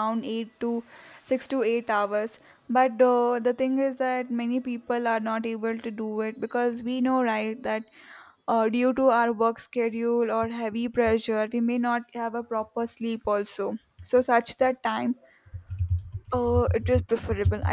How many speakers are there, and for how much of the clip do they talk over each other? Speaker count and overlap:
1, no overlap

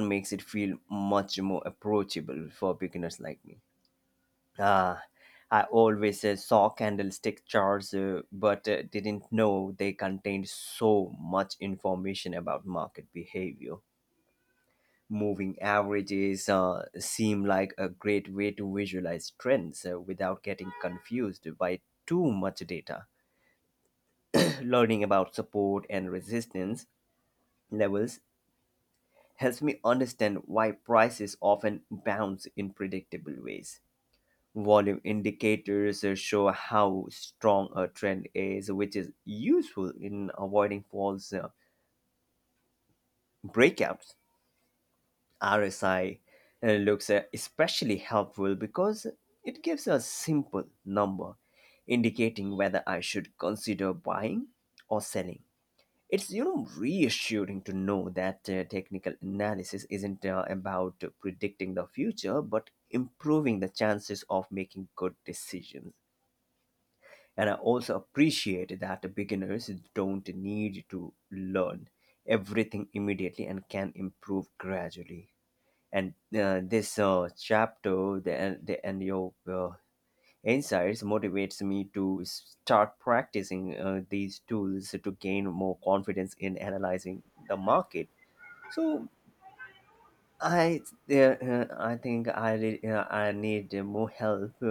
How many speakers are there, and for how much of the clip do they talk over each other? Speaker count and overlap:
1, no overlap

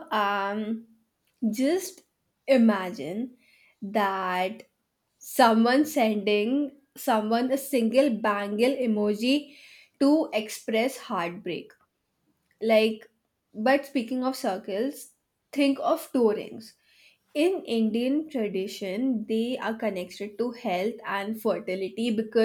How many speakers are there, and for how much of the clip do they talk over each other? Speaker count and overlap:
1, no overlap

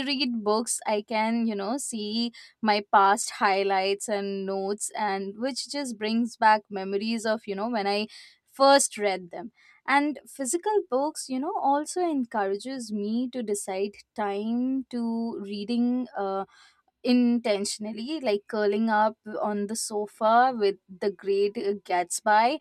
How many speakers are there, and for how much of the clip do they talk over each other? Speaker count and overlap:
1, no overlap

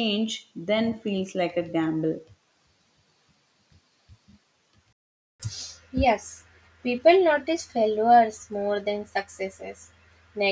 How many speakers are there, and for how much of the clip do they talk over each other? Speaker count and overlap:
2, no overlap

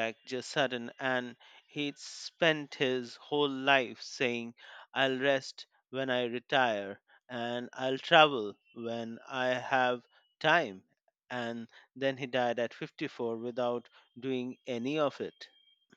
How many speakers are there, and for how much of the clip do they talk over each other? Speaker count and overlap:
1, no overlap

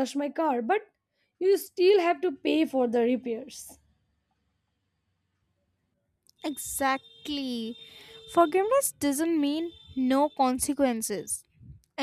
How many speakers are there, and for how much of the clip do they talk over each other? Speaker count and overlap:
2, no overlap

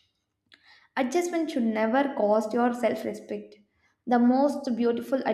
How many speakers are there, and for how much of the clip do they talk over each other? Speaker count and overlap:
1, no overlap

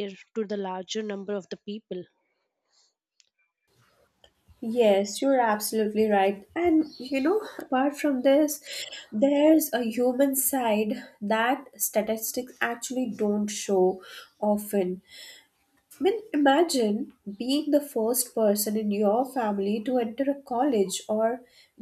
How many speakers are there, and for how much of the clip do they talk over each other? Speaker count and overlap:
2, no overlap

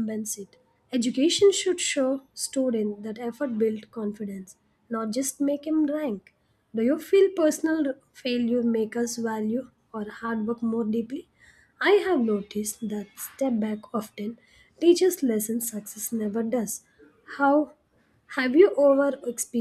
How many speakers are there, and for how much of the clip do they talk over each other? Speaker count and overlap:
1, no overlap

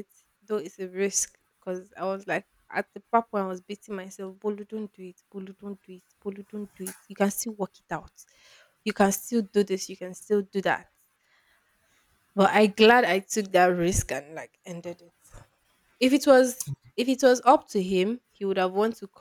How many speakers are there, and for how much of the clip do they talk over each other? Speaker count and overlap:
1, no overlap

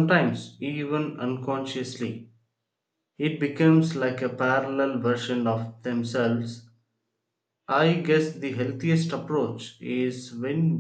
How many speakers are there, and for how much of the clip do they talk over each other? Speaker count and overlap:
1, no overlap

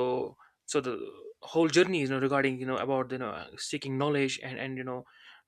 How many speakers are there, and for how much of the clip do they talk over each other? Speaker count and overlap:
1, no overlap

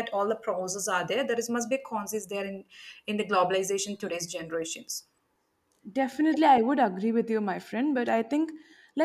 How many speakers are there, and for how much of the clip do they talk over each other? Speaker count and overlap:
2, no overlap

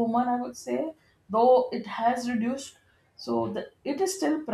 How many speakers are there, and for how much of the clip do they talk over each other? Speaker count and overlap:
1, no overlap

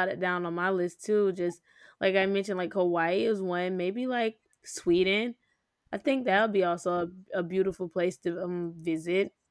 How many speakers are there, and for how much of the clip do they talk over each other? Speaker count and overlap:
1, no overlap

